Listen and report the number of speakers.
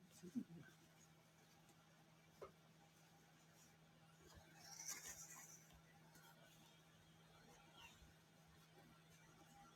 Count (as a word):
zero